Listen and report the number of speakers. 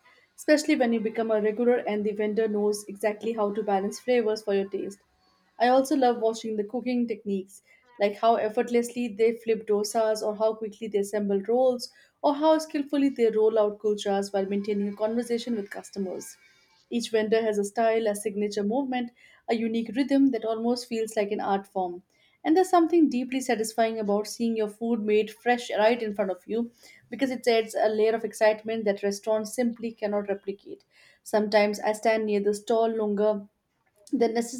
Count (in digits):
1